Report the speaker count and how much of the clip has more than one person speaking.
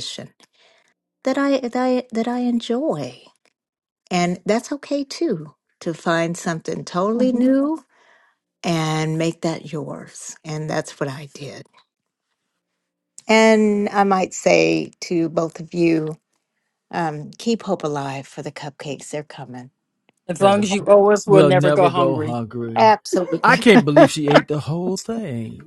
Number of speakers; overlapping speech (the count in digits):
3, about 6%